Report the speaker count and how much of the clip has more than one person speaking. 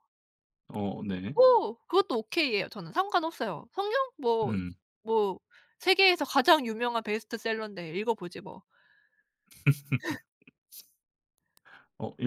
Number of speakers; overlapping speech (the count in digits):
2, about 1%